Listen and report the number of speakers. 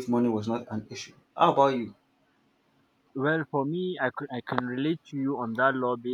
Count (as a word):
two